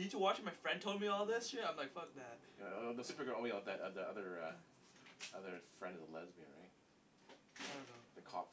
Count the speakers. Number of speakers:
2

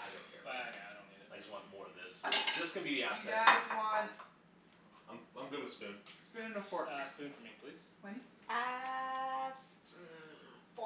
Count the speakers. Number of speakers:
4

